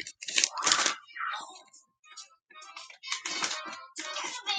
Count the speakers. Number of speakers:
zero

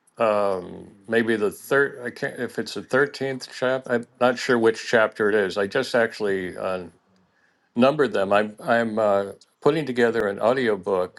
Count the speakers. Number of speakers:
one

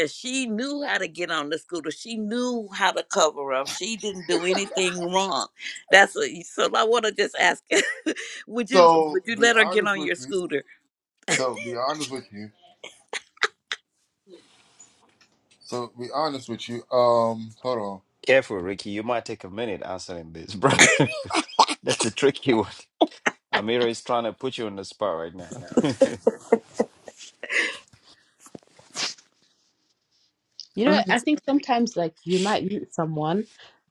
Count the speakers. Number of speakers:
four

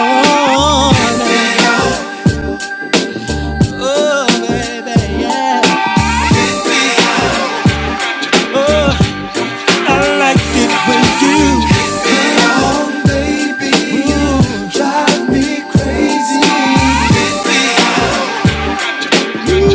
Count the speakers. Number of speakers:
one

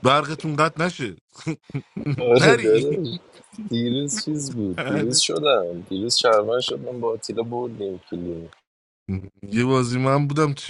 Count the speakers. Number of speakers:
two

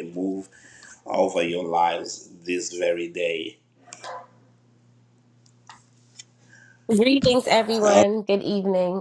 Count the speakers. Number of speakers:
two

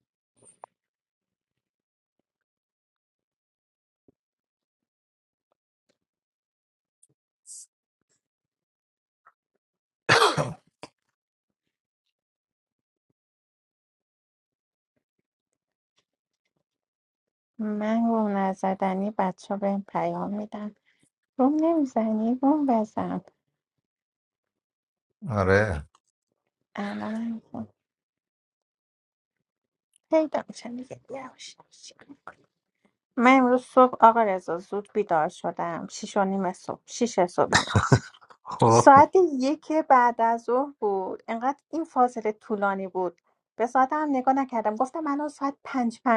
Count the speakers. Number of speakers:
two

